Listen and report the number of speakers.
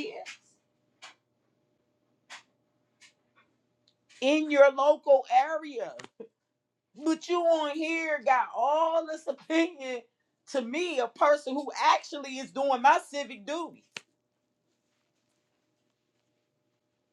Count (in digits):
1